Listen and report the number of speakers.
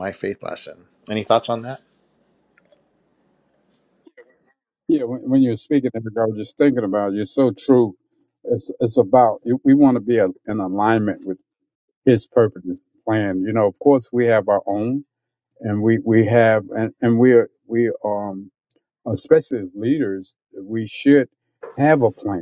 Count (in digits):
2